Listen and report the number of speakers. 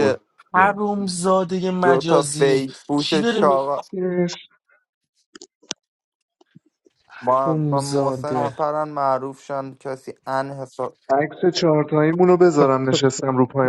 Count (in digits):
3